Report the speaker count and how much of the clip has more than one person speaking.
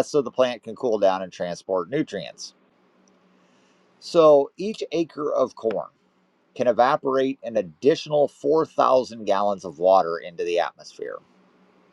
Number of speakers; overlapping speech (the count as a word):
one, no overlap